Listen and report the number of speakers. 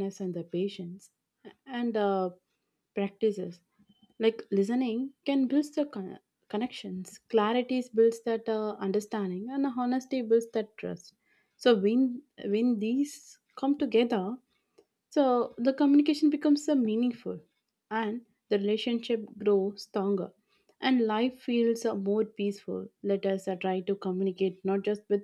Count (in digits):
1